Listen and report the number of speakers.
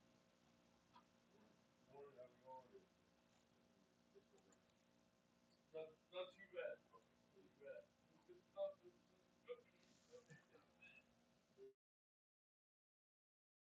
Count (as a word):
zero